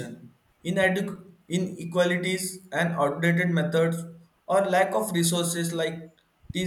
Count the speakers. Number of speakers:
one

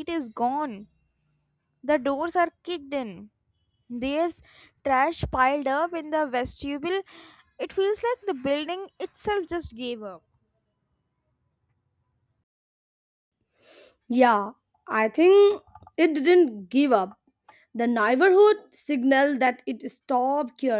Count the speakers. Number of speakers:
two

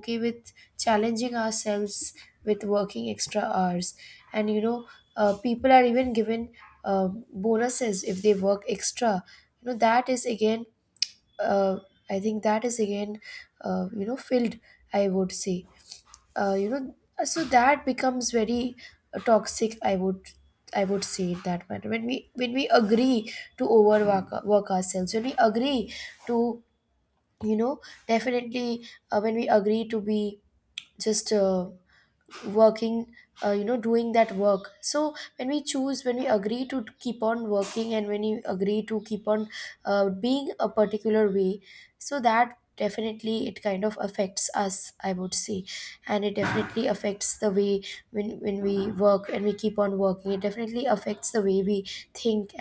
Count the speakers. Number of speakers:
one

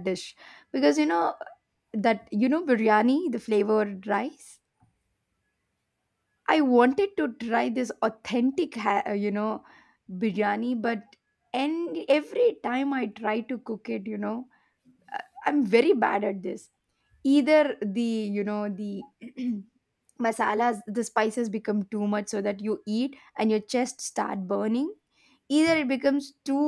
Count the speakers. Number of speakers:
one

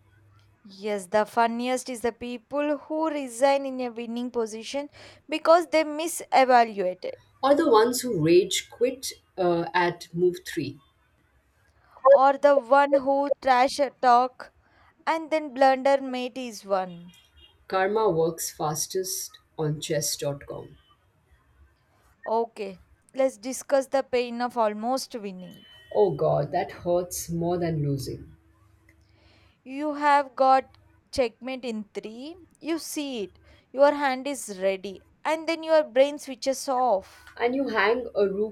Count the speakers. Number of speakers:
two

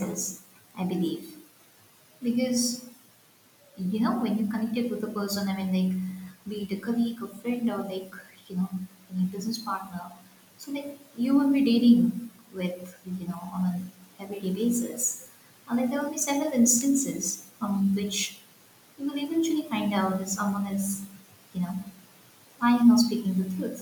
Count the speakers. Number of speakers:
one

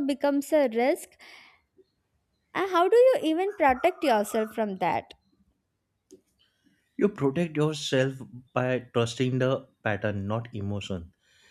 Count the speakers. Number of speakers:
two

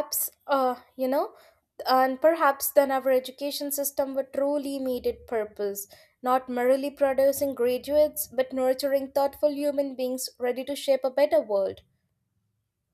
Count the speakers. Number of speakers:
one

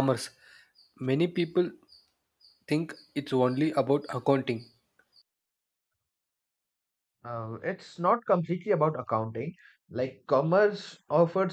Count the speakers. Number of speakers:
two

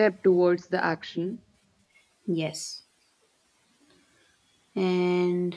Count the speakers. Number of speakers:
two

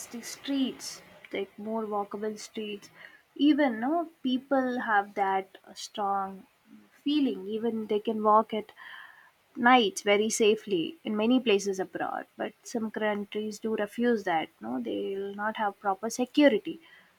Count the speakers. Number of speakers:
one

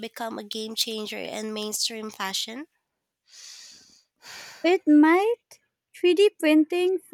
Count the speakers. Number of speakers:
two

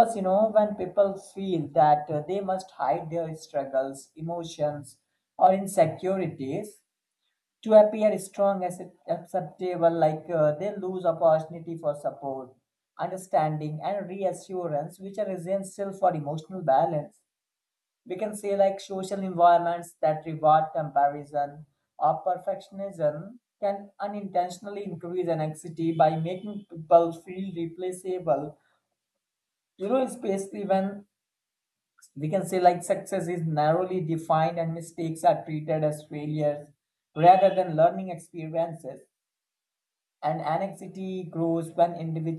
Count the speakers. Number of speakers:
one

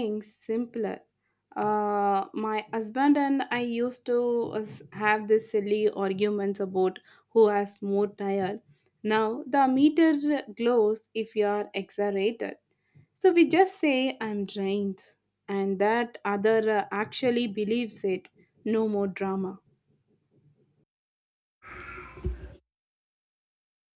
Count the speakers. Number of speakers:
one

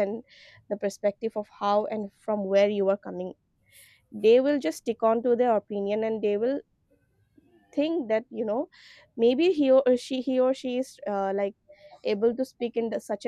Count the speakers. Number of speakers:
one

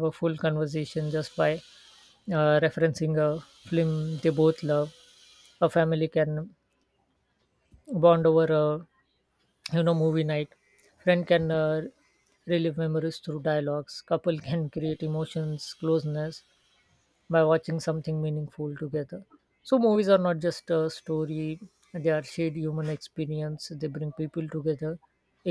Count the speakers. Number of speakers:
one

